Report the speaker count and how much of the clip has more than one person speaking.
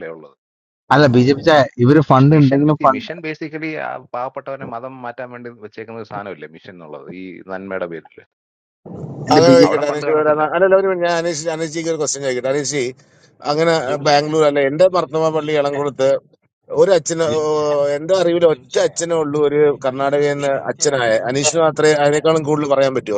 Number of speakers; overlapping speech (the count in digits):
4, about 25%